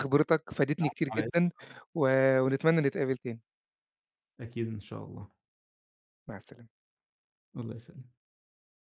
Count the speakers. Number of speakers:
2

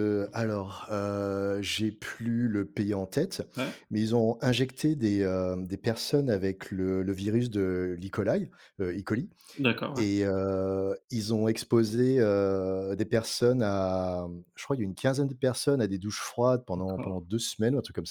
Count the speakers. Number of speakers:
2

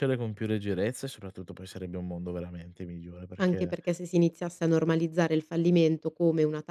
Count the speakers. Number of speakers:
2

